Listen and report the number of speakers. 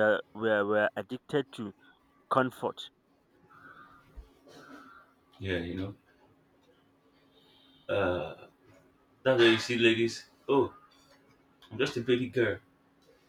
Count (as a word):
two